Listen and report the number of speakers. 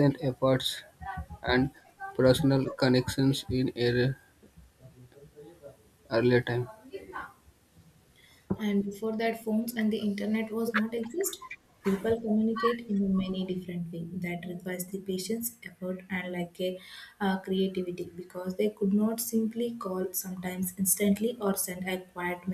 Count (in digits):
2